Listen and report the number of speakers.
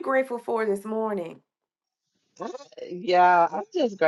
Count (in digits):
2